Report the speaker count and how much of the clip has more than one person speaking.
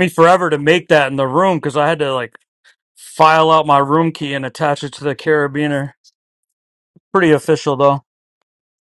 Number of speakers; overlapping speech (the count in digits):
1, no overlap